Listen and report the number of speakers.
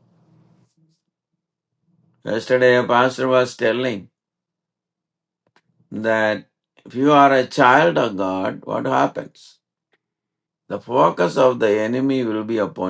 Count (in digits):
1